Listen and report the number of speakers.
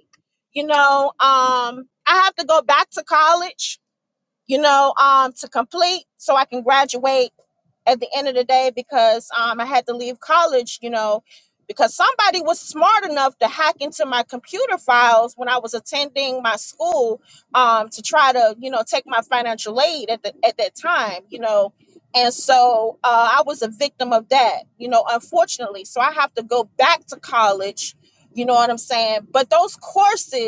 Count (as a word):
one